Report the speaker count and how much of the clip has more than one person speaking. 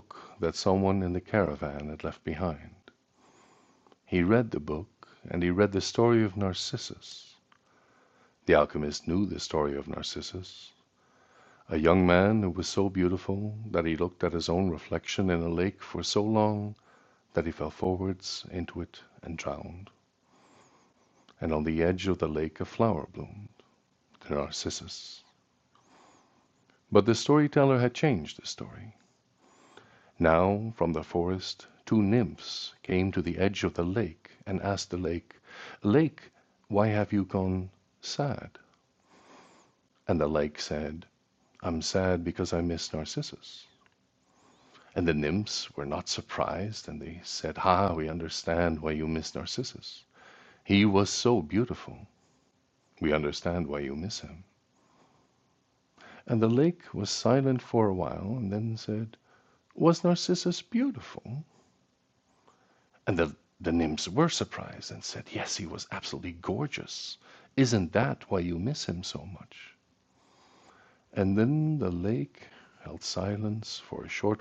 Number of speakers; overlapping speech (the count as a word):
one, no overlap